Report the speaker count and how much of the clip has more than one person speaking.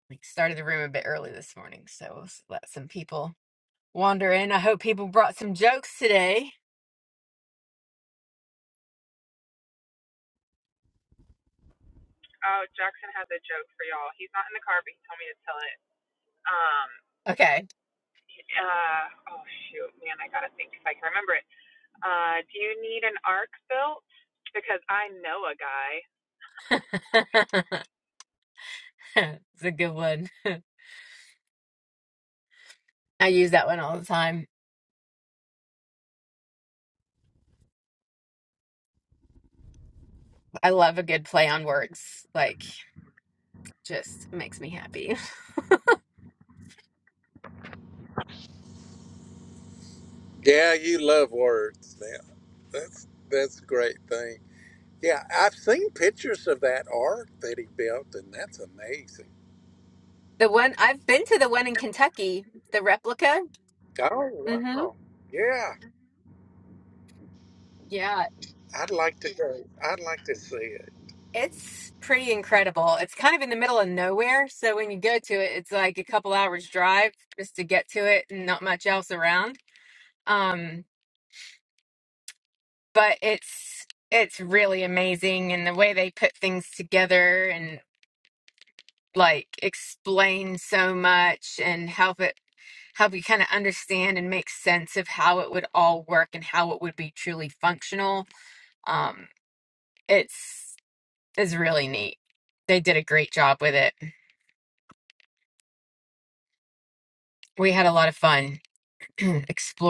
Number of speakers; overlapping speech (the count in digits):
3, under 1%